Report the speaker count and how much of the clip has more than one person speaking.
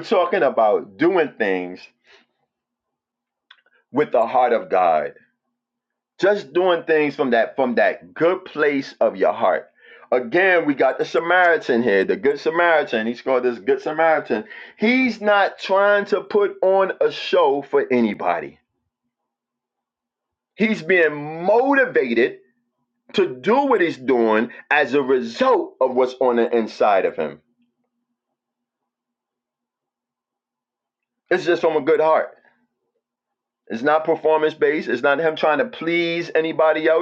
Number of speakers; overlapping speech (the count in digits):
1, no overlap